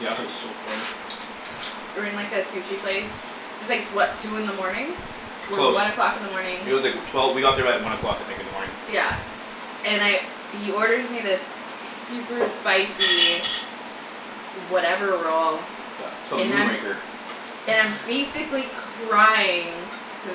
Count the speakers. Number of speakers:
2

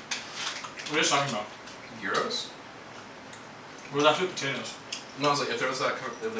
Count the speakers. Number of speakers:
2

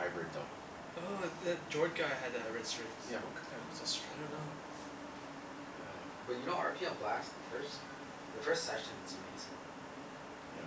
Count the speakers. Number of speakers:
3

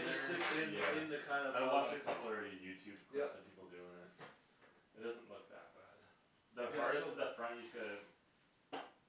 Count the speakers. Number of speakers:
2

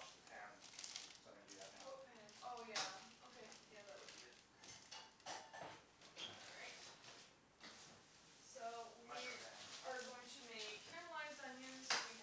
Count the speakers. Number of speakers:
2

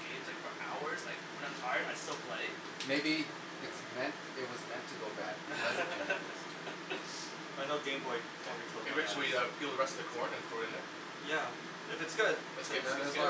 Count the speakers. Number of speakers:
4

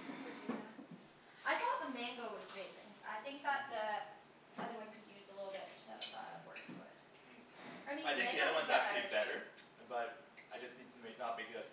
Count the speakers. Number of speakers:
2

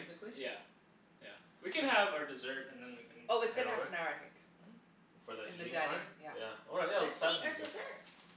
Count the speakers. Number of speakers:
4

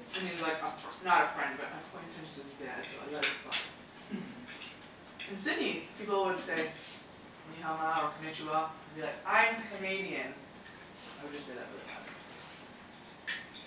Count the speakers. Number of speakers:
1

